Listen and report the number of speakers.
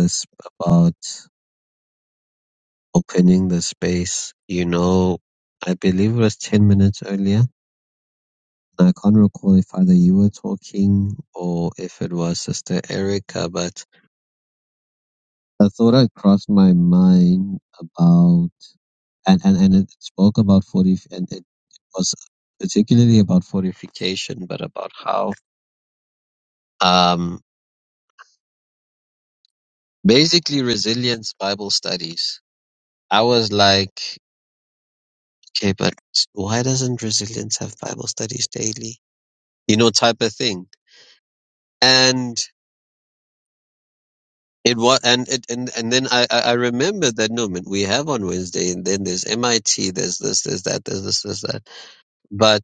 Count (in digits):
1